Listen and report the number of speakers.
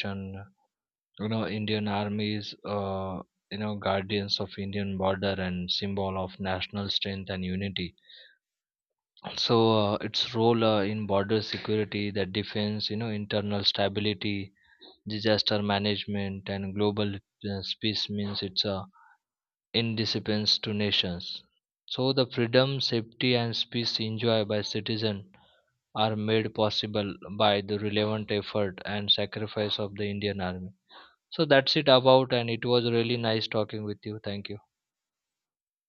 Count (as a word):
one